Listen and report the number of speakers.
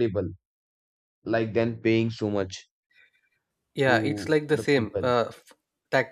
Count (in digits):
2